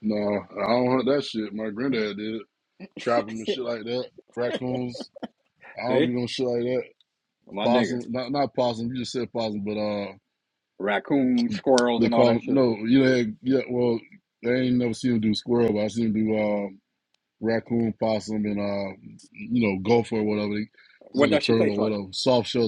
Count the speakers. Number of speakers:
2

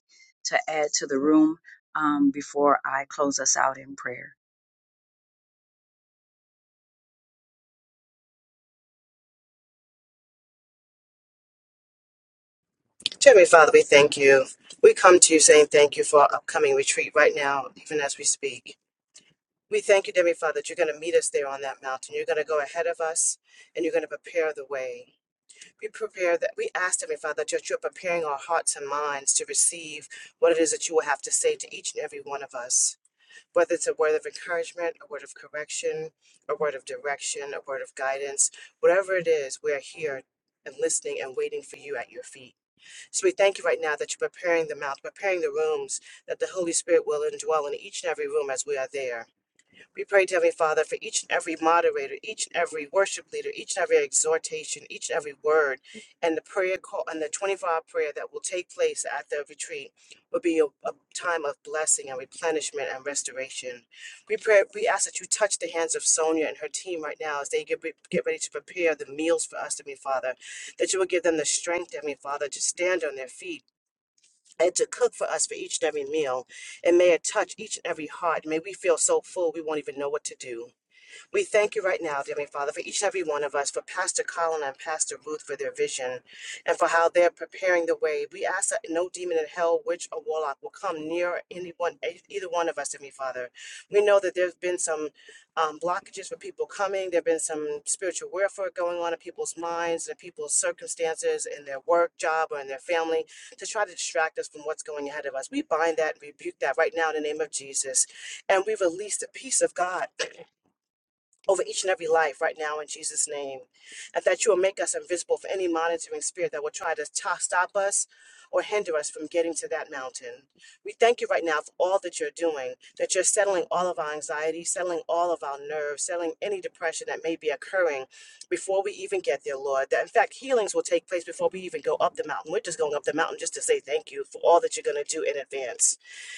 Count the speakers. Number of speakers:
2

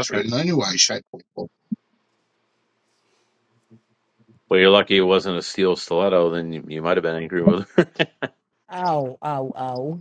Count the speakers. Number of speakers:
3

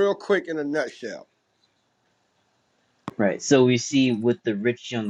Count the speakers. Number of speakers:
2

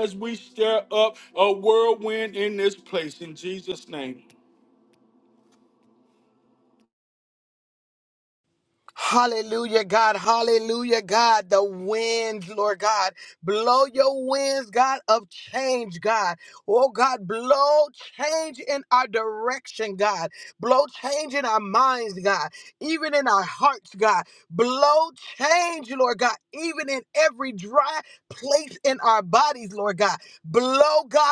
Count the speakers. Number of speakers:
2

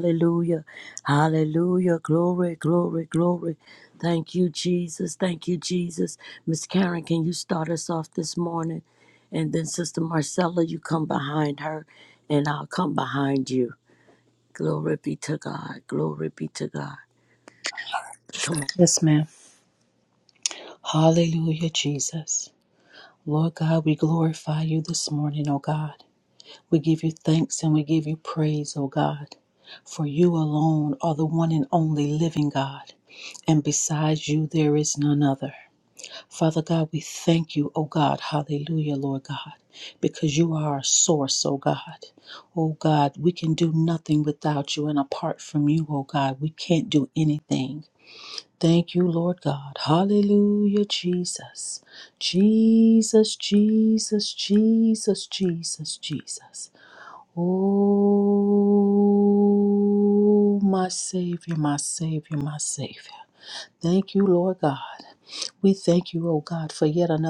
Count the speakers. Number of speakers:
2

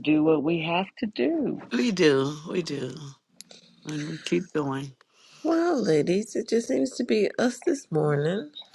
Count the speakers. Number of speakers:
3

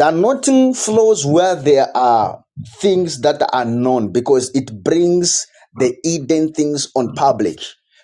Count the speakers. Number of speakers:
1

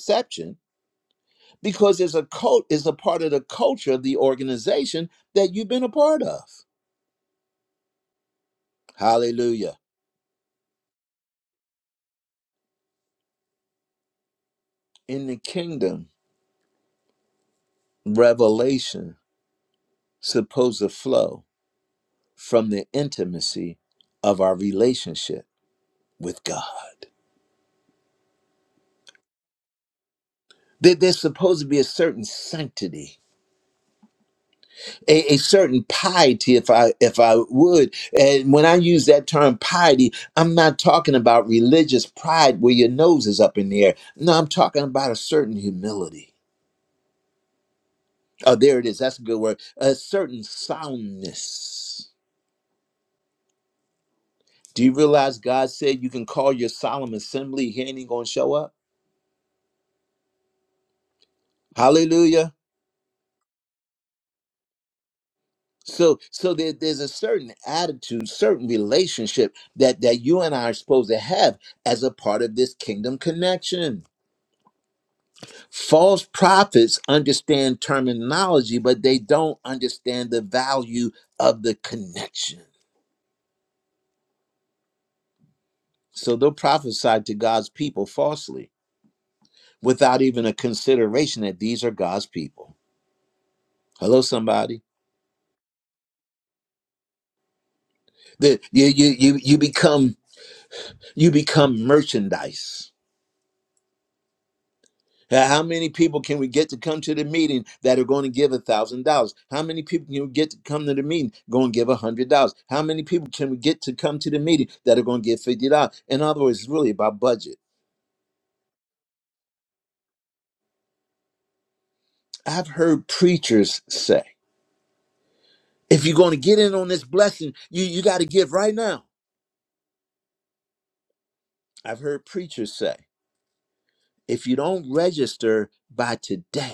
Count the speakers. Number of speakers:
1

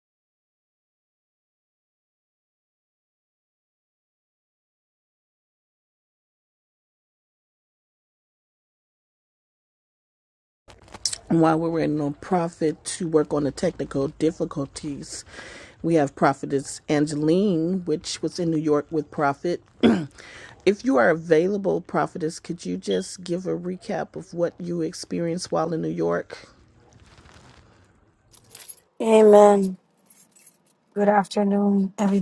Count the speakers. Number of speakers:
2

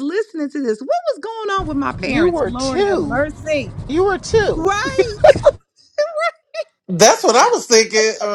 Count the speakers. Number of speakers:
3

